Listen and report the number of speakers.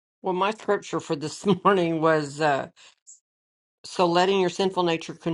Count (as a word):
one